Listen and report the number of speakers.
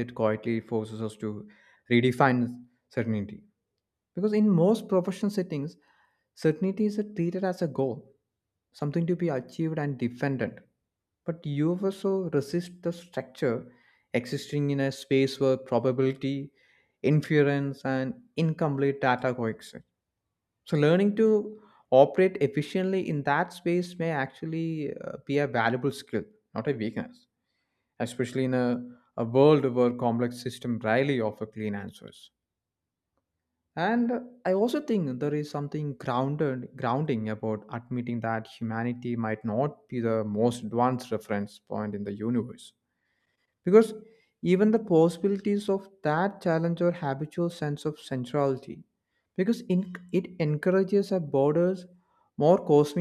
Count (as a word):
one